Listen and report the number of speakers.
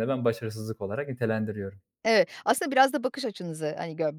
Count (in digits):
2